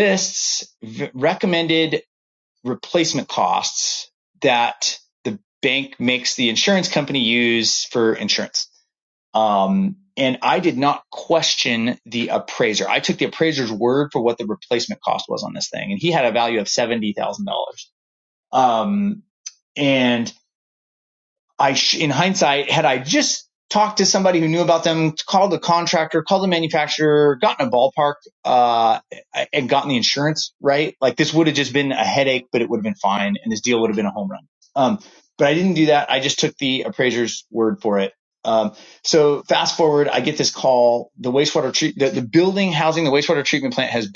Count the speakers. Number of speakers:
1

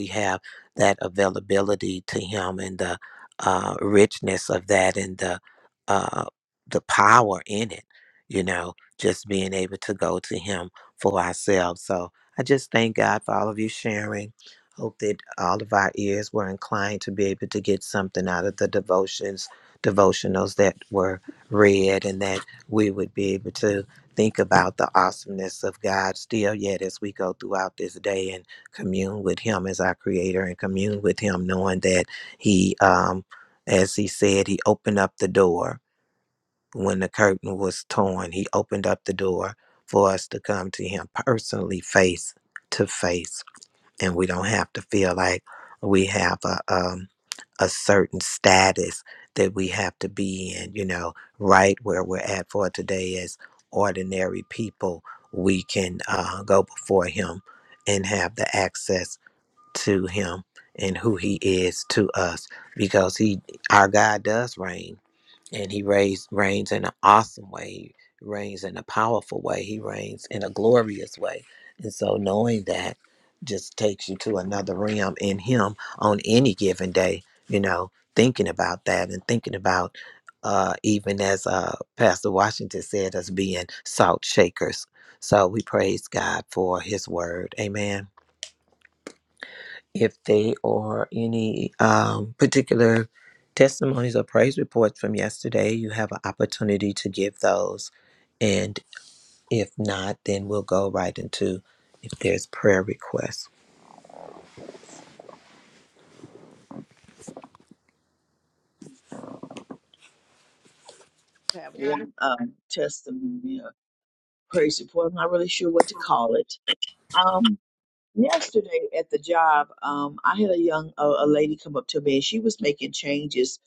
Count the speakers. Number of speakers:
2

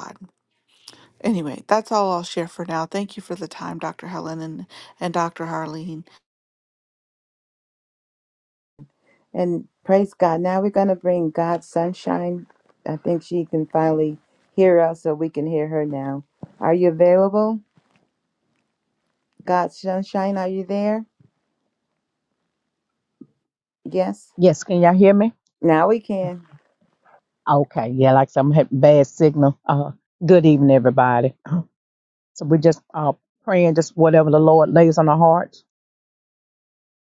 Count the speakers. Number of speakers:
3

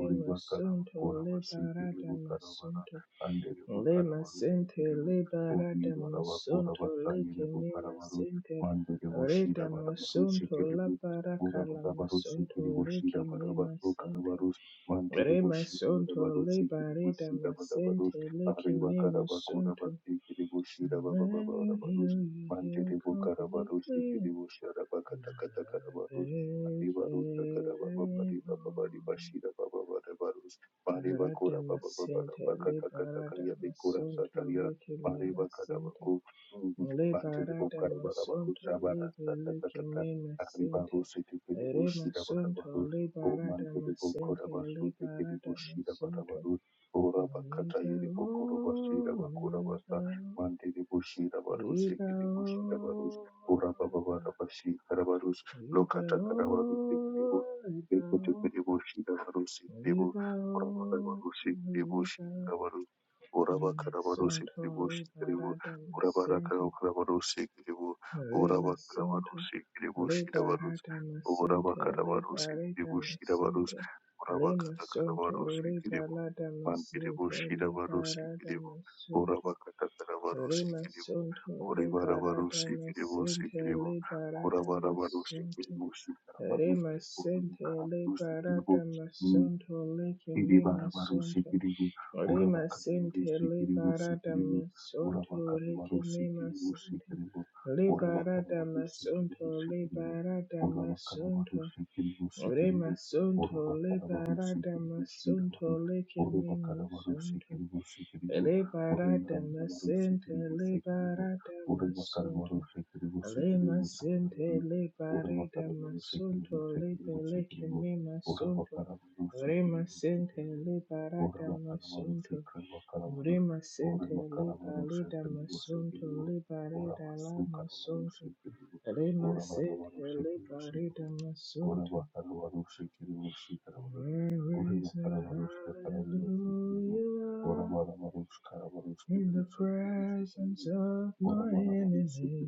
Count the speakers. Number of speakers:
2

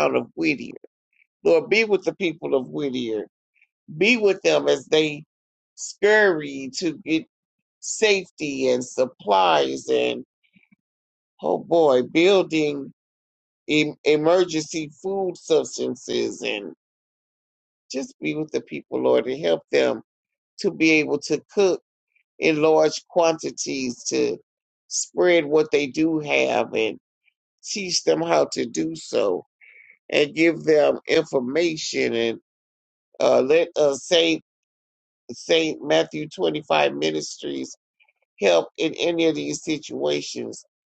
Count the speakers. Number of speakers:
1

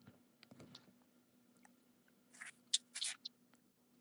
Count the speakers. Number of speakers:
0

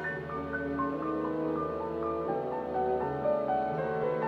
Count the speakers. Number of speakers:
0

